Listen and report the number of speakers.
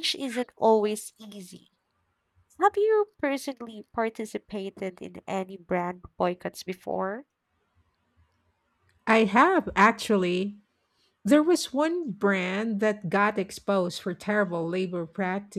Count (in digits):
2